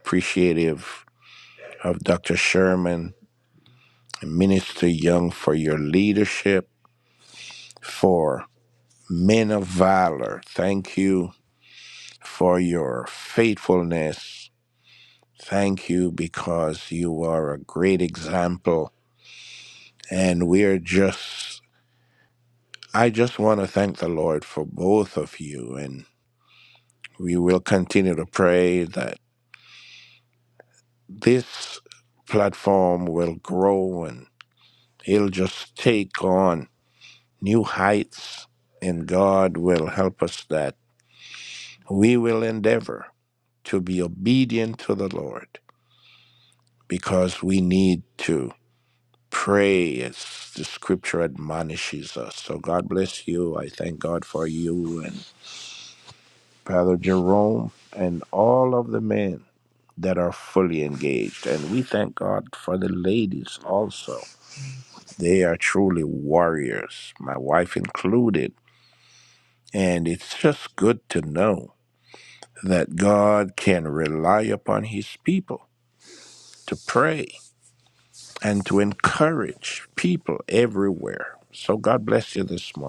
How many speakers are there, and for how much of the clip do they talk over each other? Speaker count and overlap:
1, no overlap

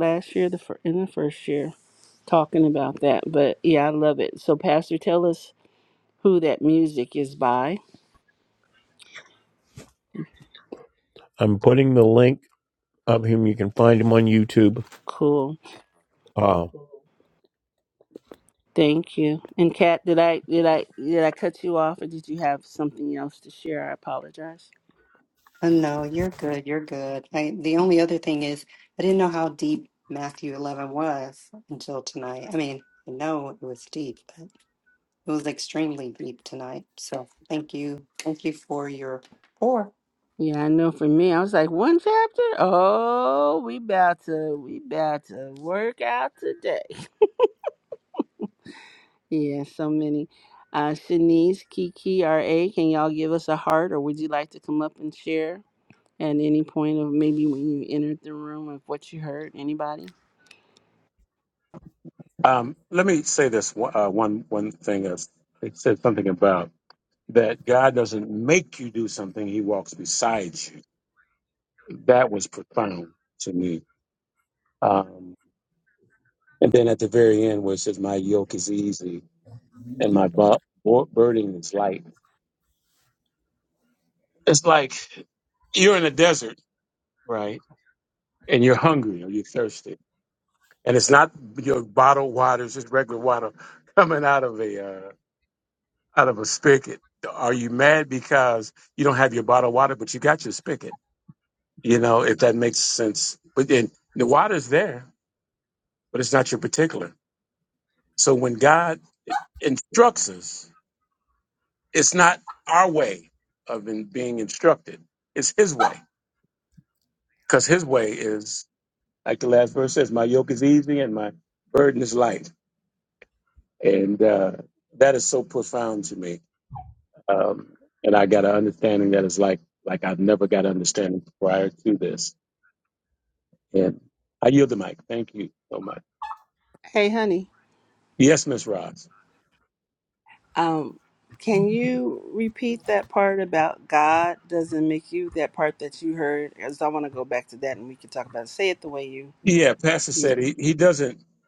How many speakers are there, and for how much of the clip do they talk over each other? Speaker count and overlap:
4, under 1%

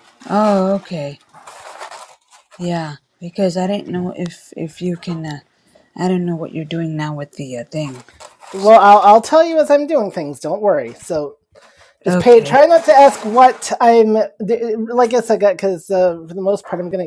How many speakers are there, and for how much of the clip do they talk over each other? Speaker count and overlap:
2, about 3%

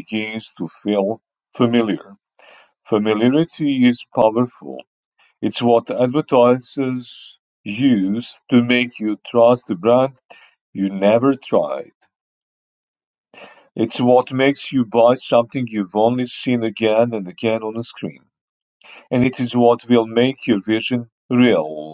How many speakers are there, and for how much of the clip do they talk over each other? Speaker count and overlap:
1, no overlap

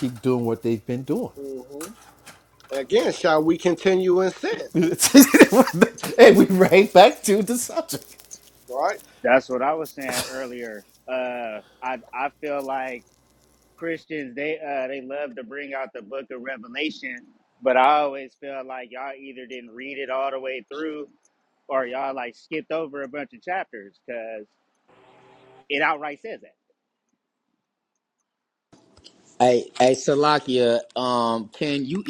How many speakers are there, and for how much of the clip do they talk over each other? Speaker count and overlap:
4, no overlap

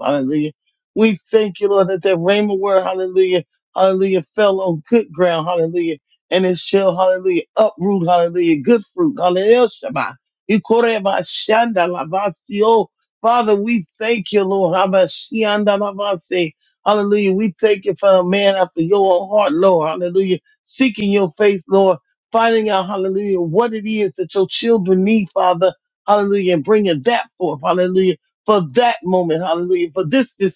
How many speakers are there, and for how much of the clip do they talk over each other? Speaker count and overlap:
1, no overlap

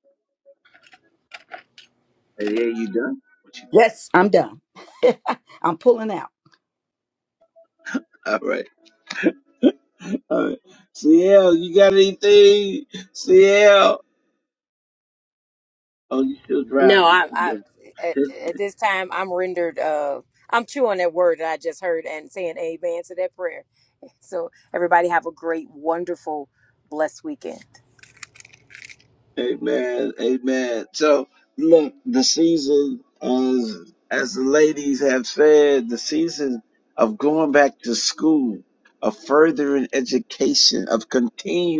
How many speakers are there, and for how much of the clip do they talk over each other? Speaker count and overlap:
3, about 2%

